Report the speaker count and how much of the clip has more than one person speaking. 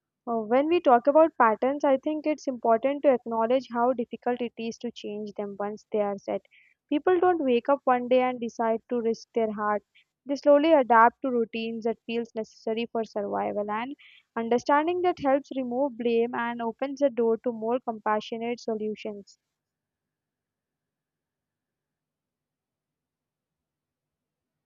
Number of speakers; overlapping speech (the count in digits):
1, no overlap